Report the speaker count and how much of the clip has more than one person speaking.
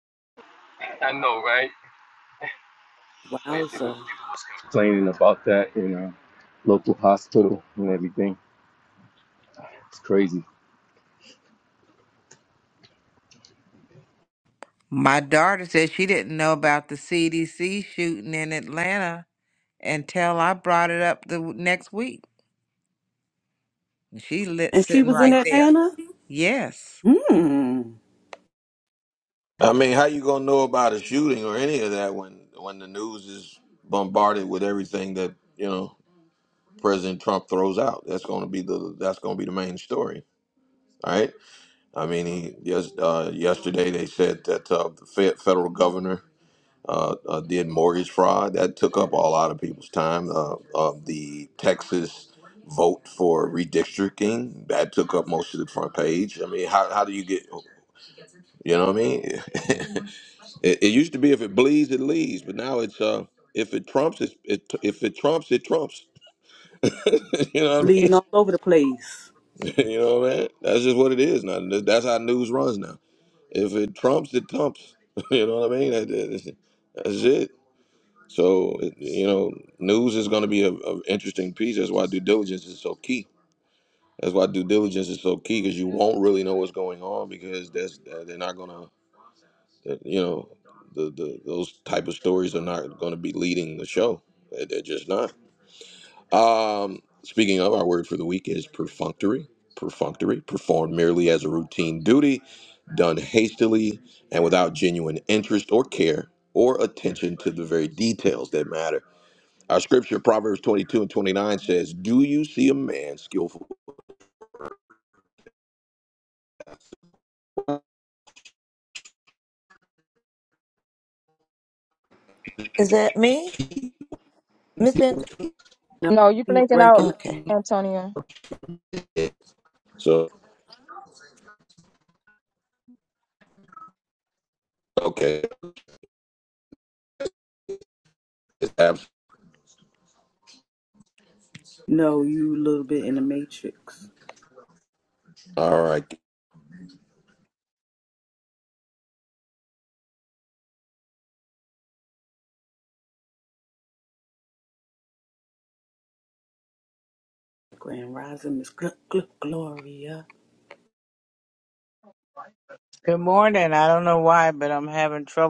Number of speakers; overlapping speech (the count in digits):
7, about 2%